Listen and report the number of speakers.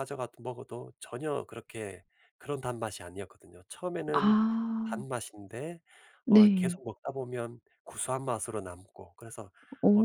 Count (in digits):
2